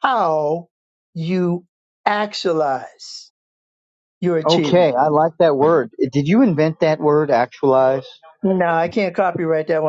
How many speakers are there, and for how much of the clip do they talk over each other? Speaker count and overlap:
2, about 5%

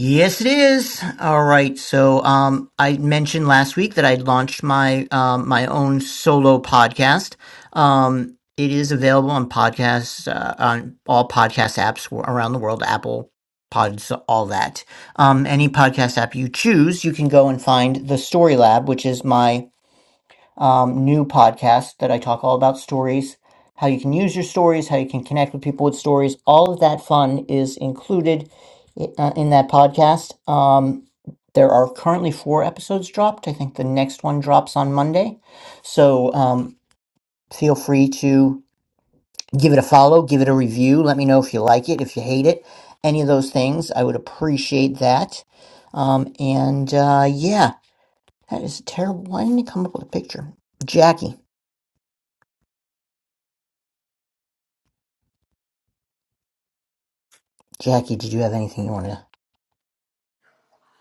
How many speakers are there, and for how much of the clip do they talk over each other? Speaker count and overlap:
1, no overlap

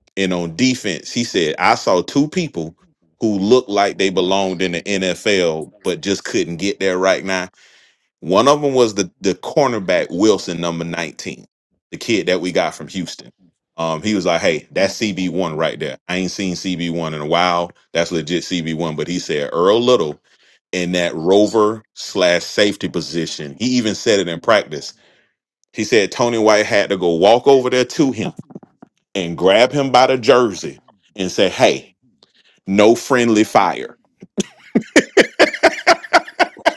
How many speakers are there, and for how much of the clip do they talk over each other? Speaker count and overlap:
1, no overlap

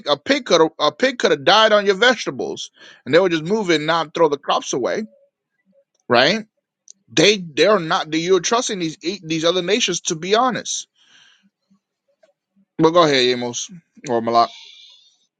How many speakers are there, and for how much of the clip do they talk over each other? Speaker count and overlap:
1, no overlap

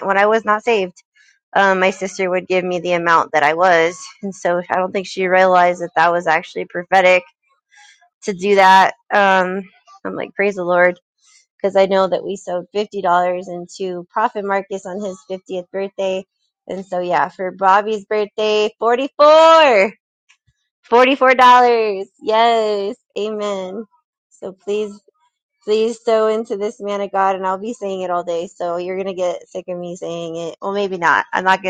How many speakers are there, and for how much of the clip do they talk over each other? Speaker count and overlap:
1, no overlap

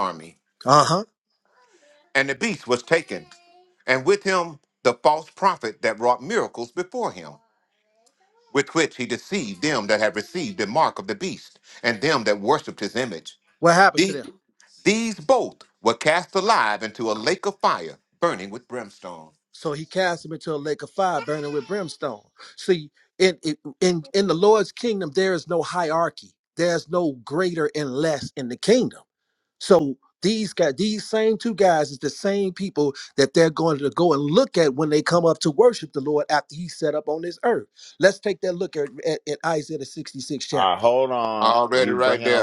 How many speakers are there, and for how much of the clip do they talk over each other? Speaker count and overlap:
3, about 4%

